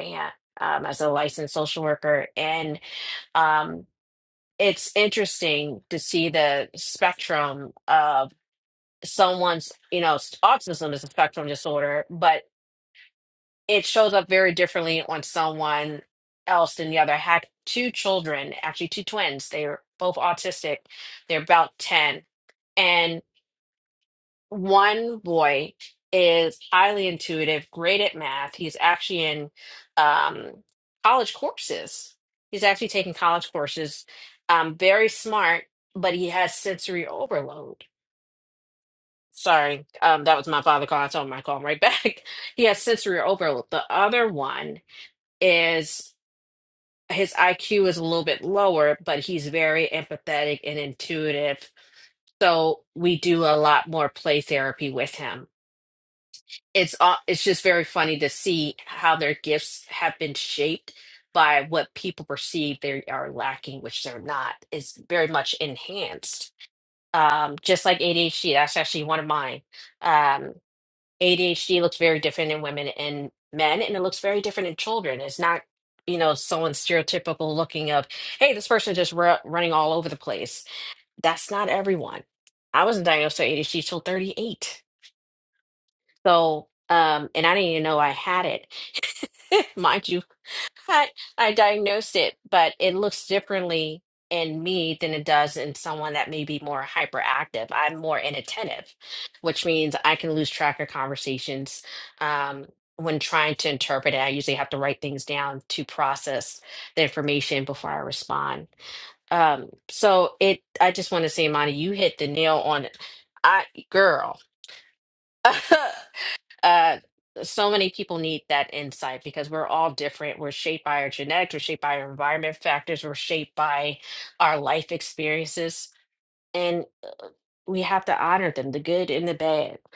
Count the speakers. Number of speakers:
1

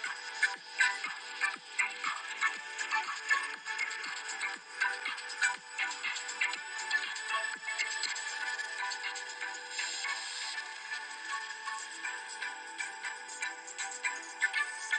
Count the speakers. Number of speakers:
0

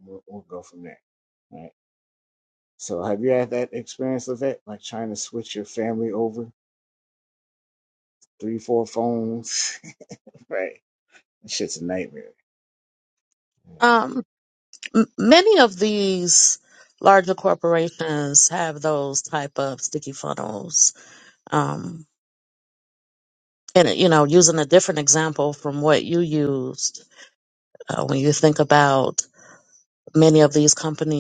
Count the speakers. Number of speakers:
2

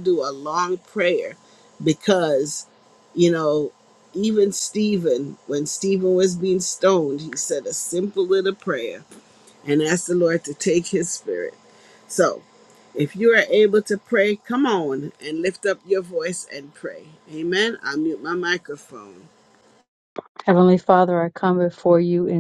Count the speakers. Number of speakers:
2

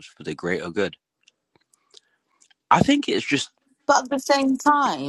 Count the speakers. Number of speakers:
2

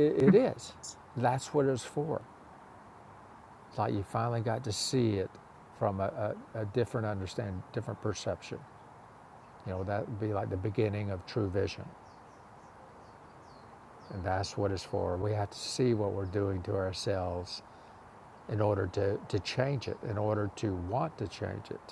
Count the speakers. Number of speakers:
1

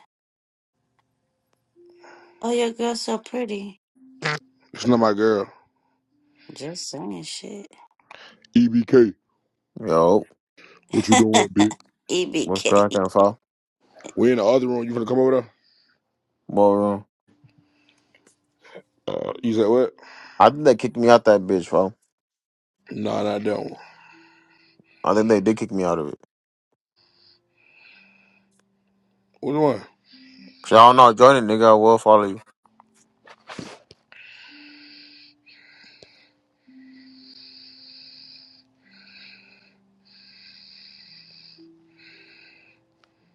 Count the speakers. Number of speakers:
3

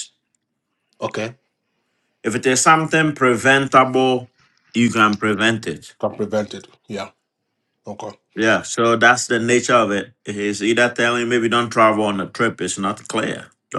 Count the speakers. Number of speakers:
2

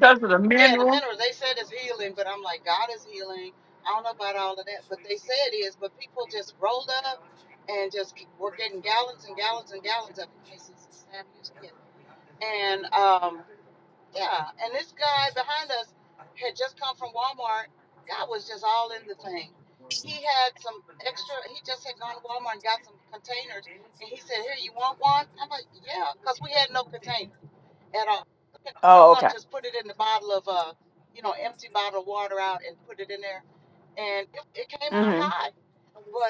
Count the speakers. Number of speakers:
2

